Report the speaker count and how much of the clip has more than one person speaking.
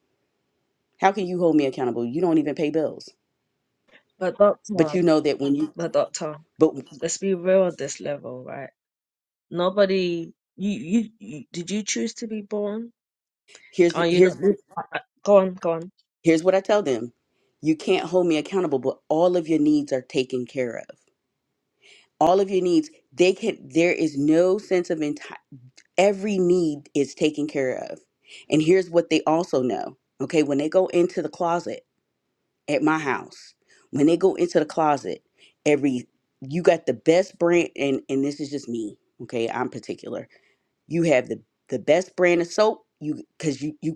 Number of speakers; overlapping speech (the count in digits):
2, about 2%